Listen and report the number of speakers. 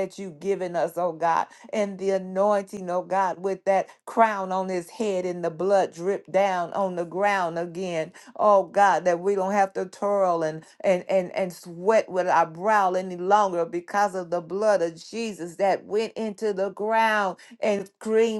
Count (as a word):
one